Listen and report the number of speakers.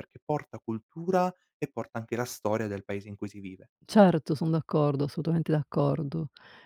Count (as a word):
two